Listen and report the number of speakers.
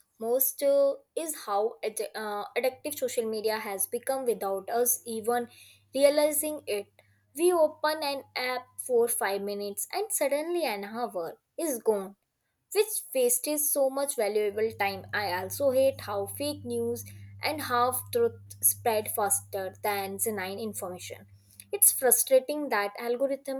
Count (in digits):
1